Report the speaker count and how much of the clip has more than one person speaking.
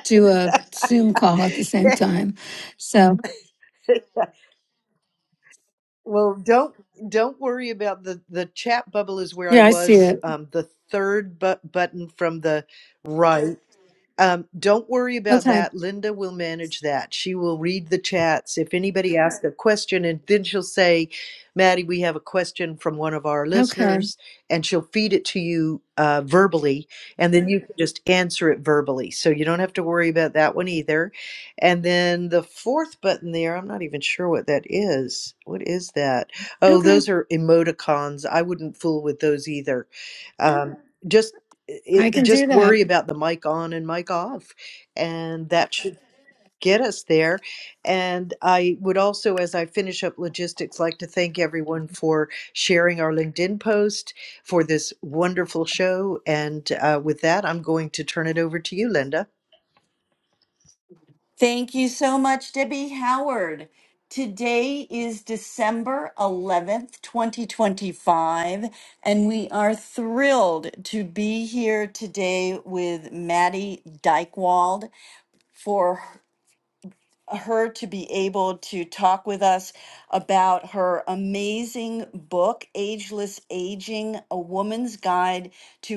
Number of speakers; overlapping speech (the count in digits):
3, about 3%